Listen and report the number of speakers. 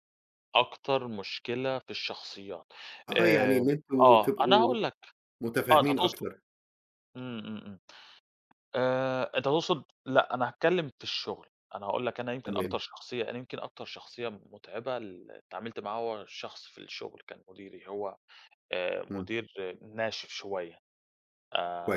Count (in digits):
2